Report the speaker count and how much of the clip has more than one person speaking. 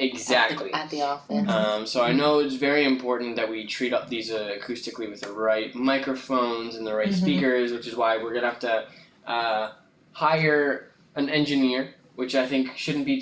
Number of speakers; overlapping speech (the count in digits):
2, about 8%